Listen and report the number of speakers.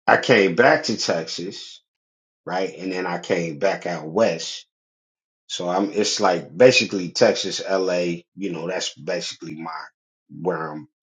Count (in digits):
1